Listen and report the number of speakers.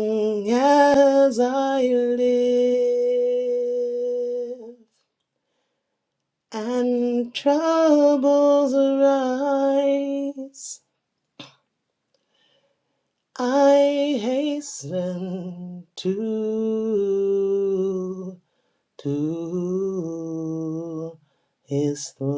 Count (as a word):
one